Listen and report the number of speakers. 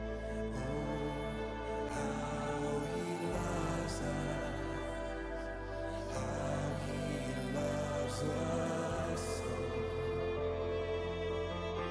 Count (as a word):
zero